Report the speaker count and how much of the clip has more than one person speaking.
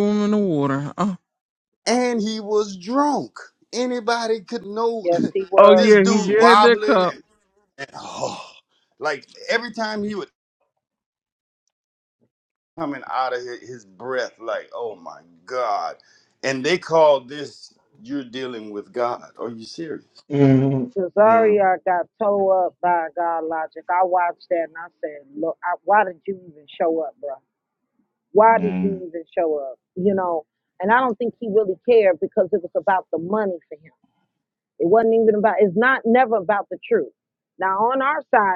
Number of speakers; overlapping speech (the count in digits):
4, about 7%